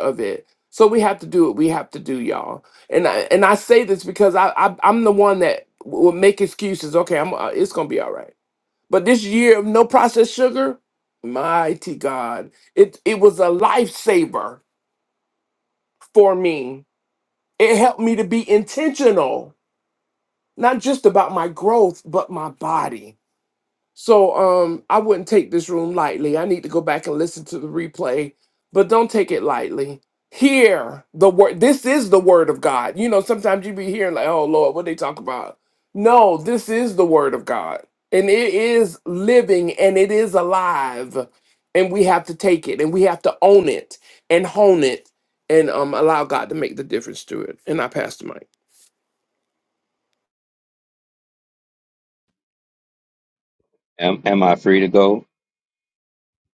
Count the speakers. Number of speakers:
two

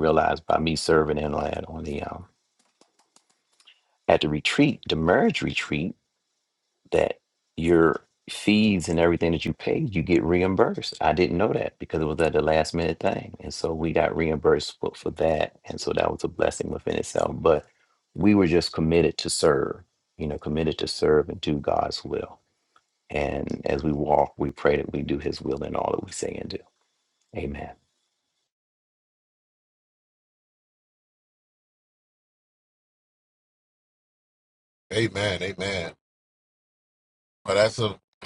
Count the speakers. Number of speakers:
two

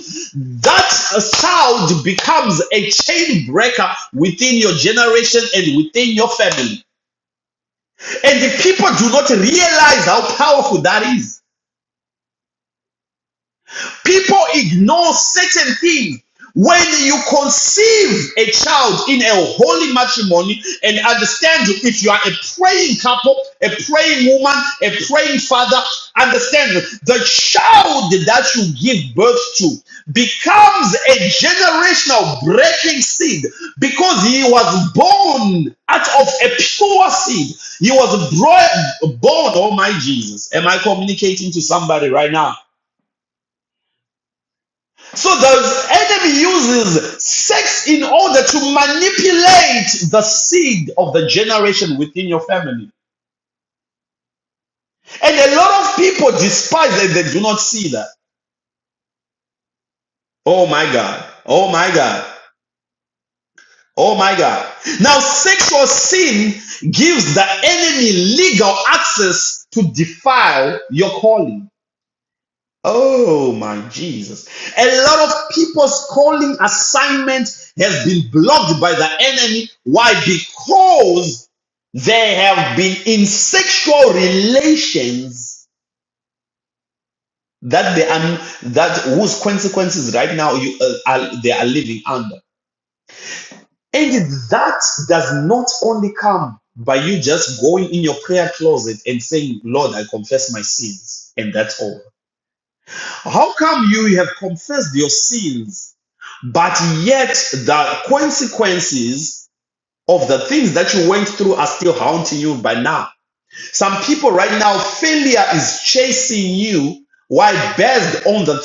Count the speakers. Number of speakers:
one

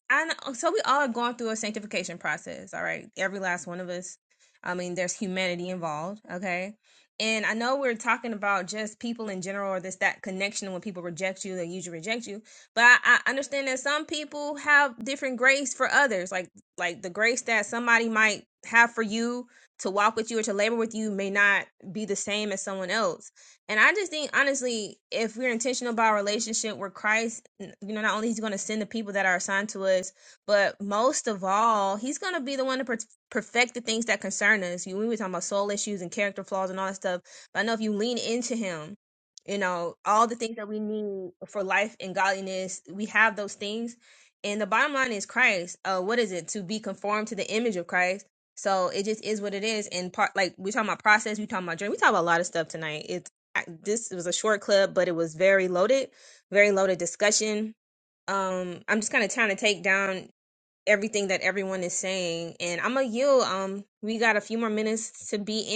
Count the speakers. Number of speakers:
one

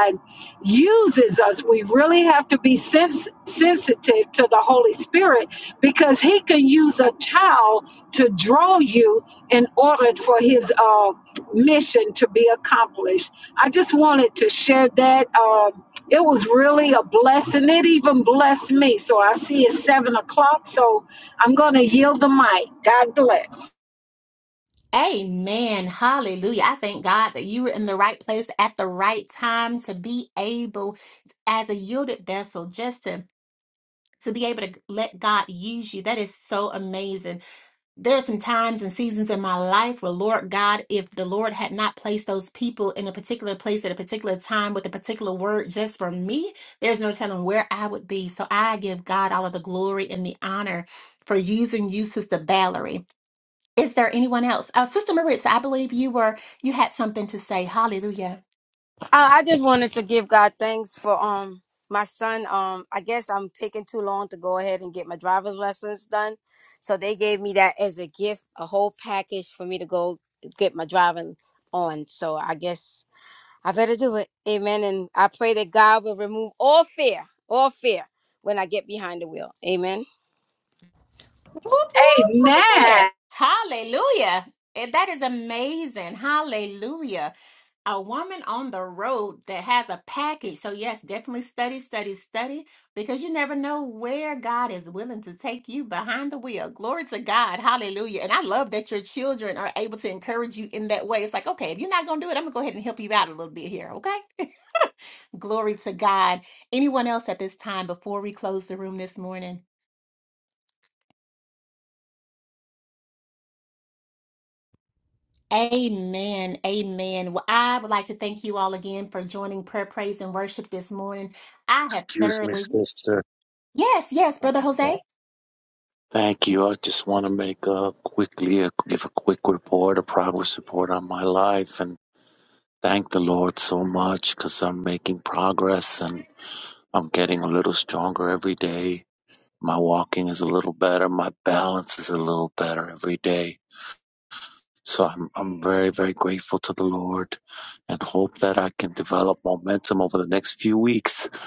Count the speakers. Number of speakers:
four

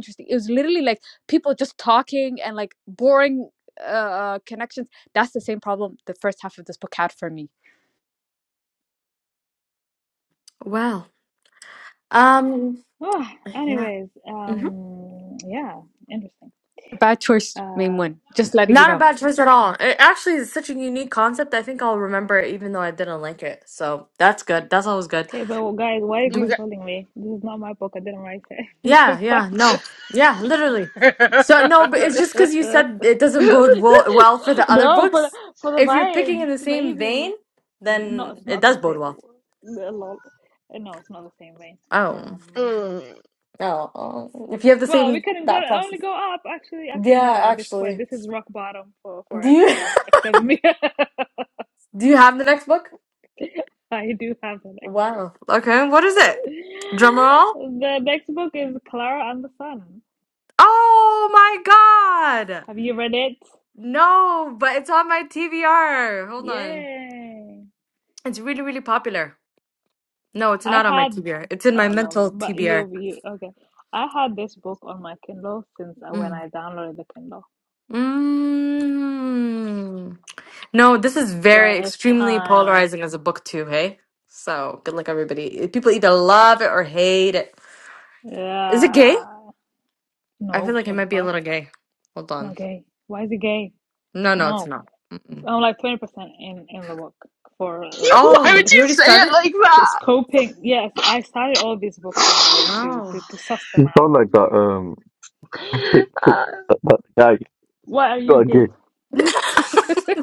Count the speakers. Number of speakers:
five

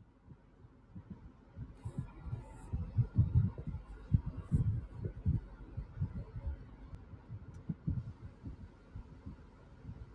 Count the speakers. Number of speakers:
zero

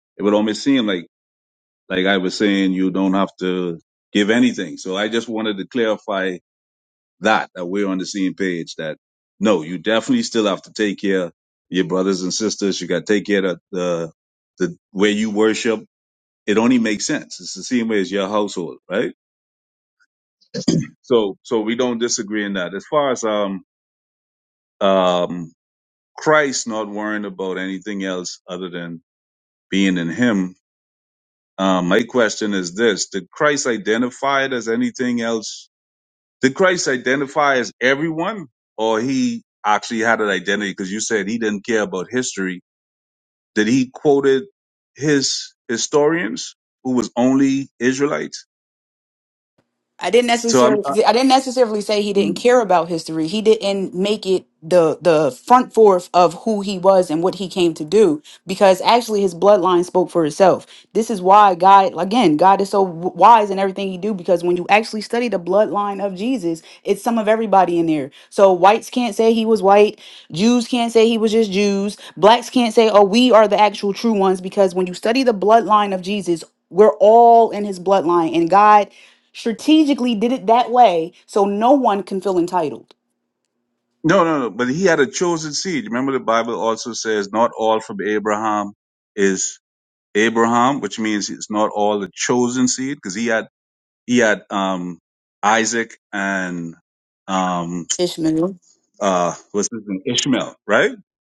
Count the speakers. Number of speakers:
two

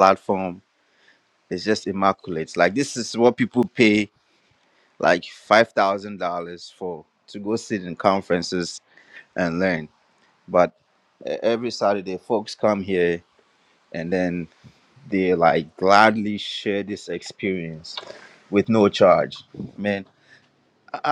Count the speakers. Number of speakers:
one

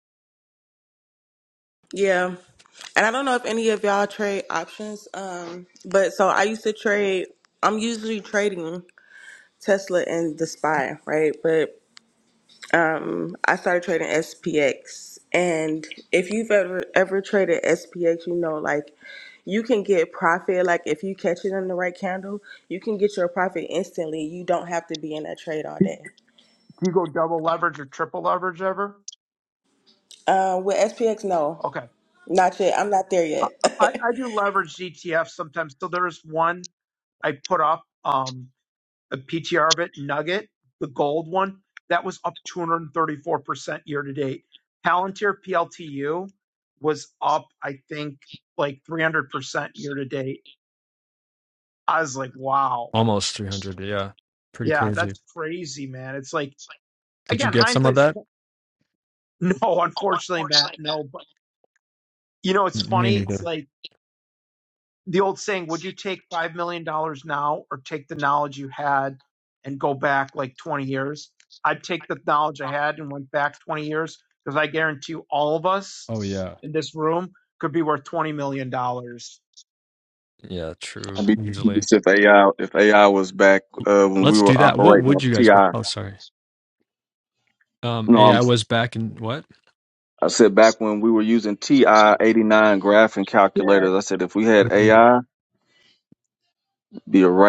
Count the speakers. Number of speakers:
four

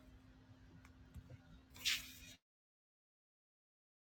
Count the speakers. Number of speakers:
zero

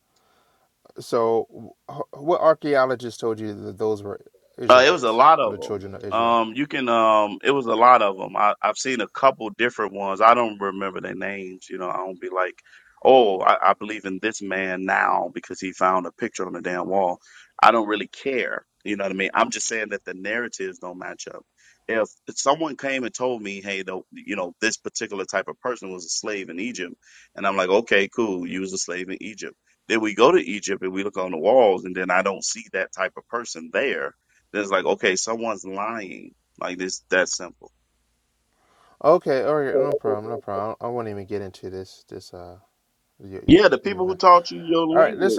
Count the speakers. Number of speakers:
two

